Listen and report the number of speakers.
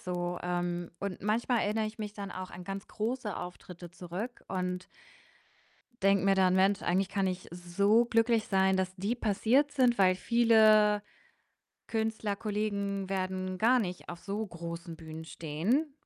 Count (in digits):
1